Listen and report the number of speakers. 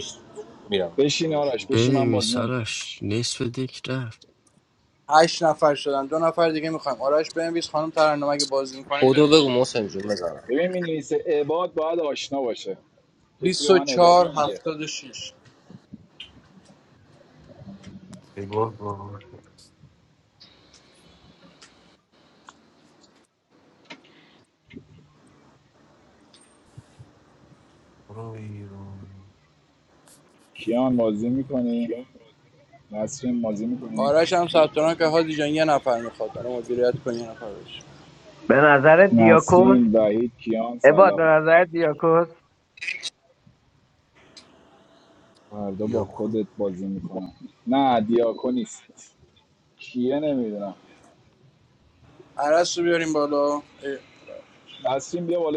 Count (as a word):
six